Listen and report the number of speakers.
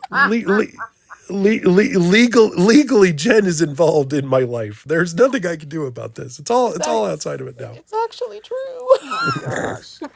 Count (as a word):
three